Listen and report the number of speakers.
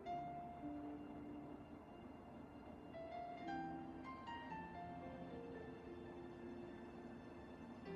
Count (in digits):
0